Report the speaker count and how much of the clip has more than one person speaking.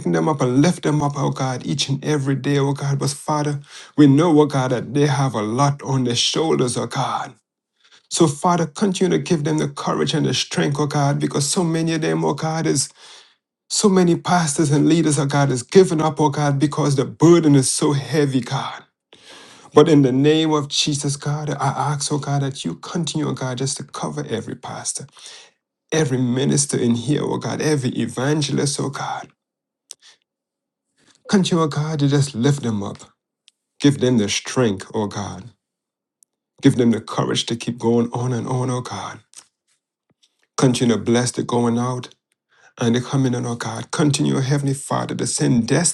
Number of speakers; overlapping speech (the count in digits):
1, no overlap